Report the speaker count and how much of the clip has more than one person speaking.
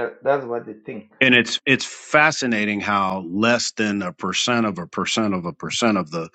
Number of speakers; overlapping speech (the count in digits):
2, no overlap